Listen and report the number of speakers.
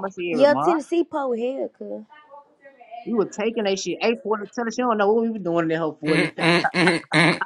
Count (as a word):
three